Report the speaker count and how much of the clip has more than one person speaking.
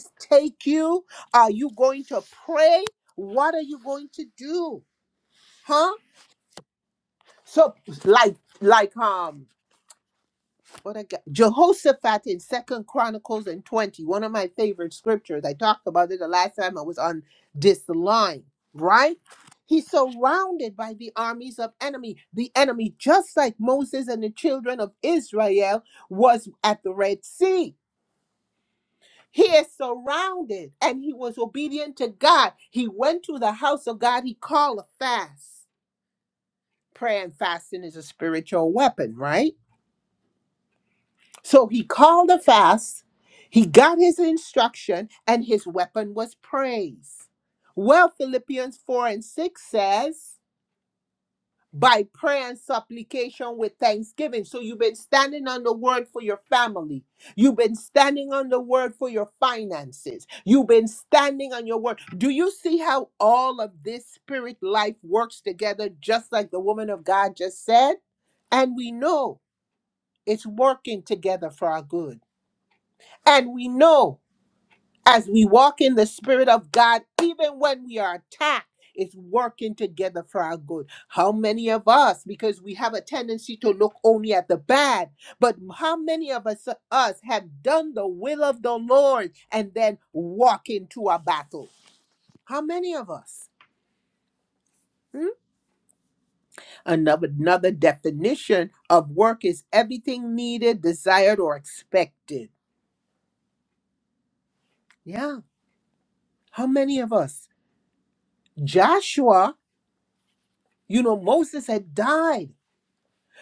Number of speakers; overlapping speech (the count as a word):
one, no overlap